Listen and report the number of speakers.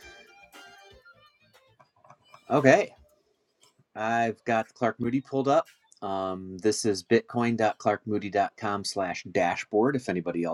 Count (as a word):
one